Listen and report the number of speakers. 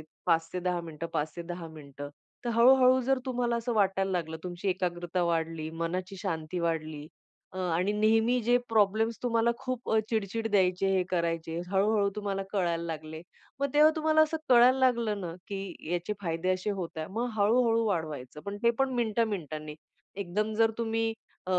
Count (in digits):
1